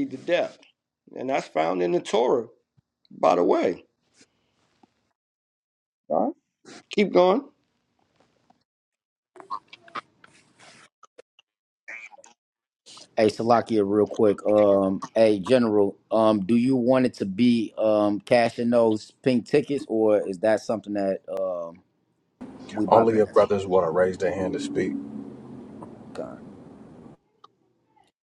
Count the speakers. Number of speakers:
three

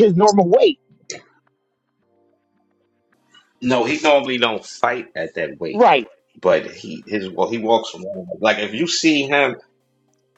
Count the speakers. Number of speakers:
two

